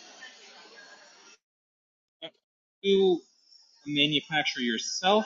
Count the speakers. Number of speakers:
1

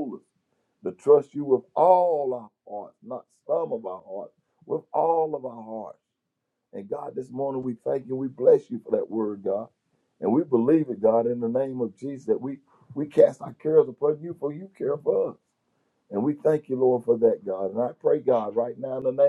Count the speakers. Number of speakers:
1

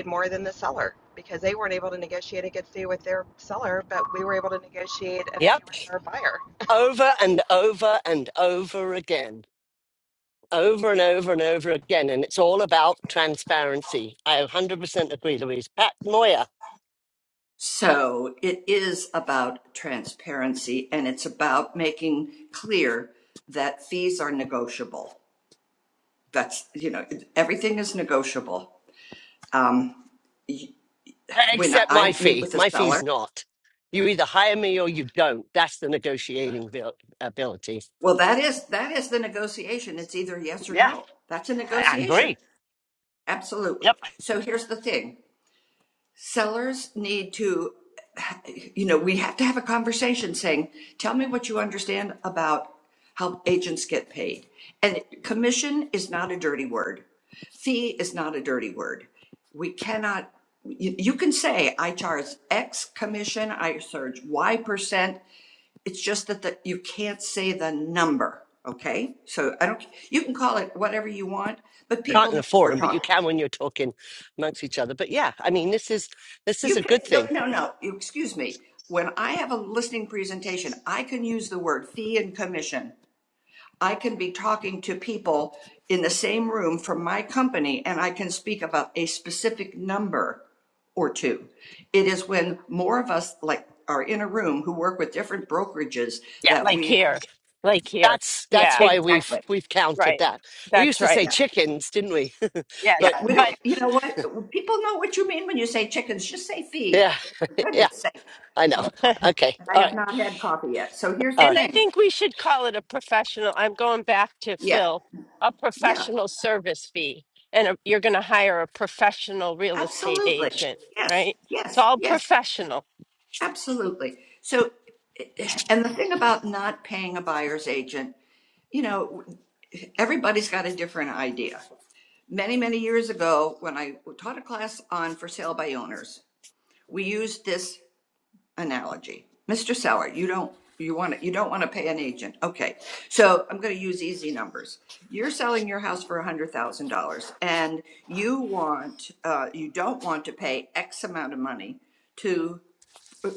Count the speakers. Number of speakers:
4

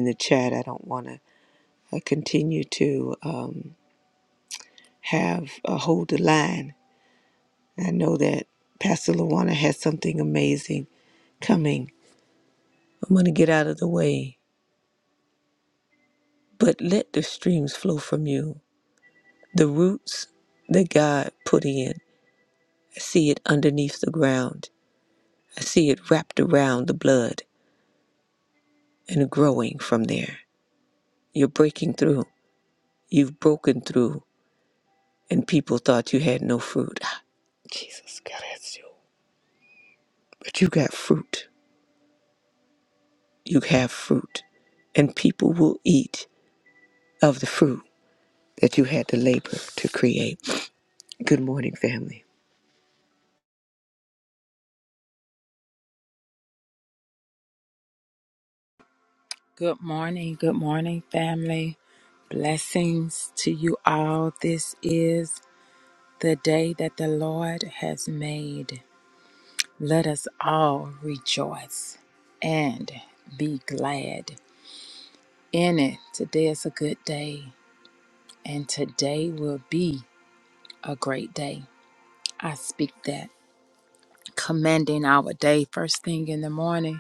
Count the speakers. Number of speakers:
2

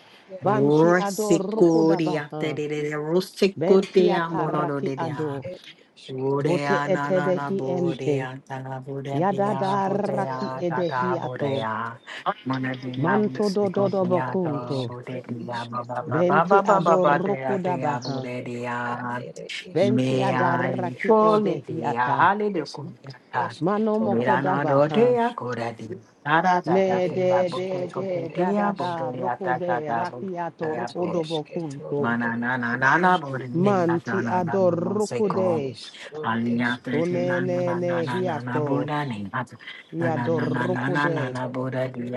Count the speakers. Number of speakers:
3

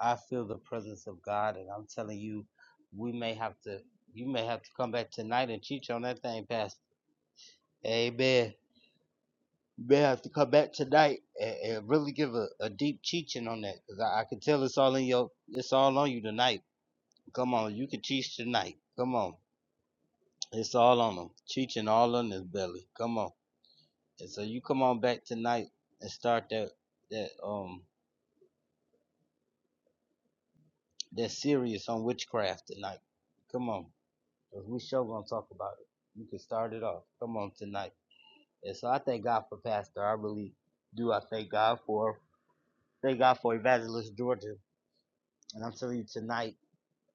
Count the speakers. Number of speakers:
1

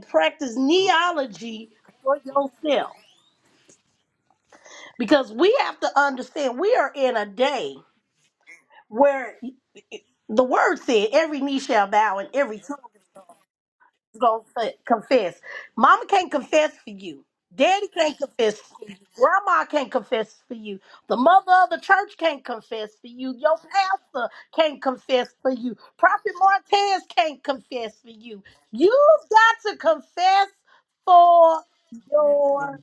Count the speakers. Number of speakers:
1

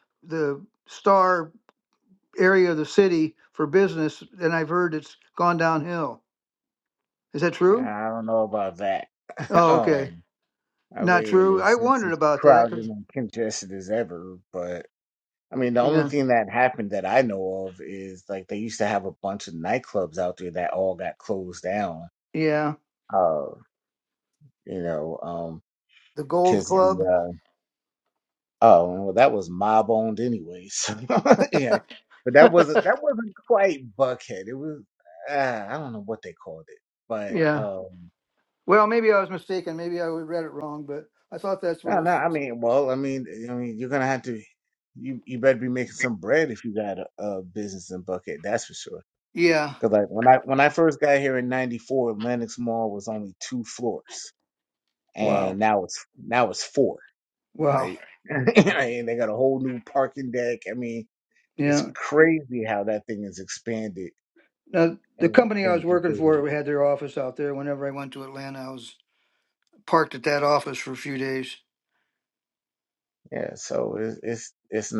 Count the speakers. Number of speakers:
2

